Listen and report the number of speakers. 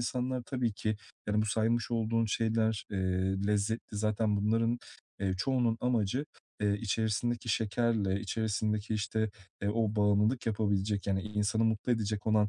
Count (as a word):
one